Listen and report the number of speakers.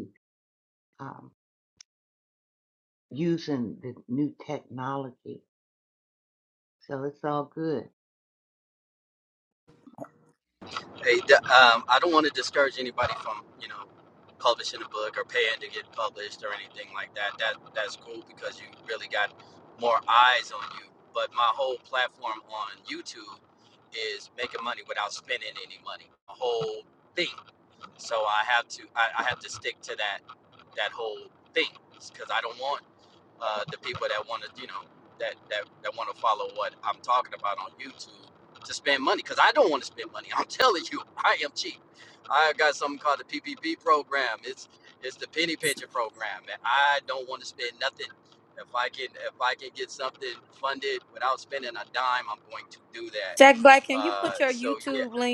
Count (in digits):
3